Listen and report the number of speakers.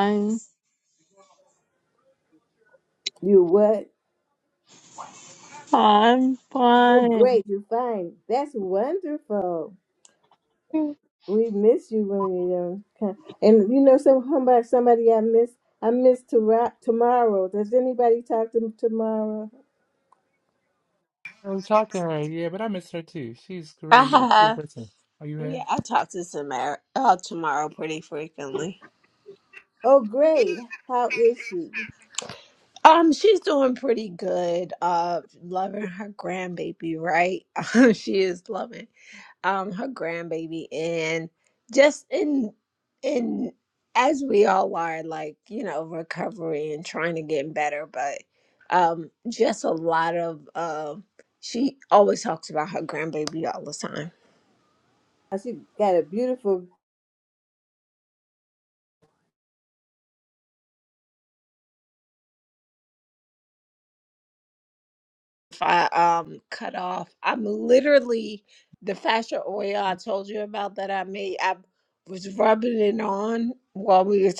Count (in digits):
4